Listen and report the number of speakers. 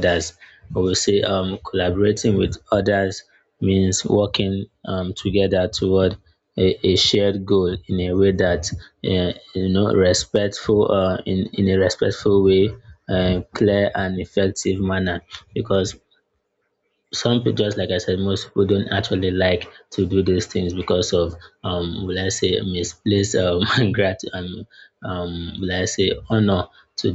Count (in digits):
1